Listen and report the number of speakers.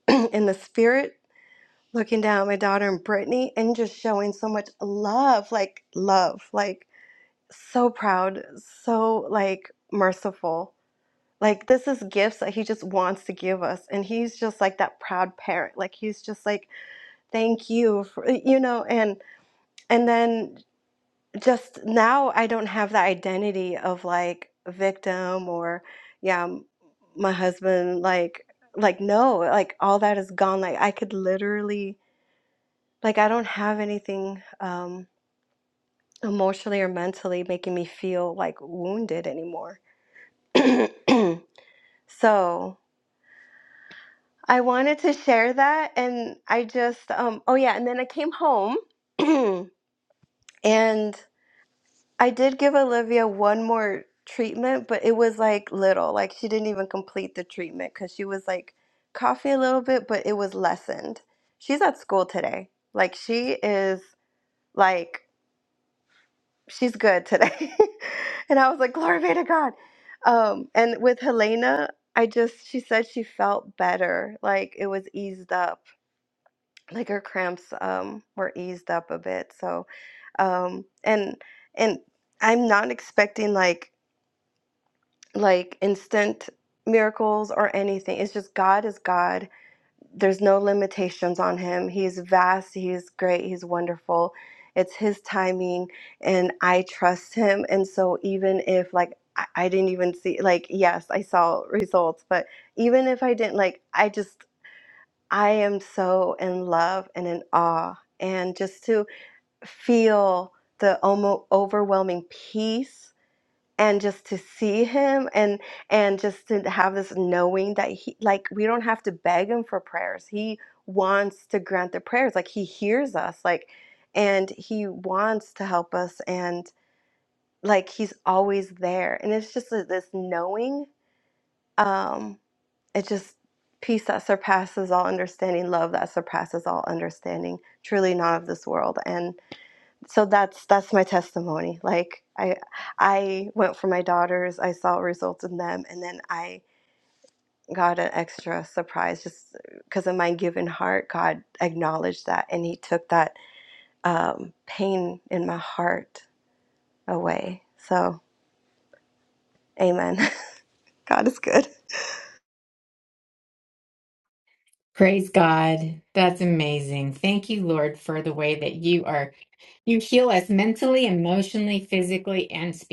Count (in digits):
2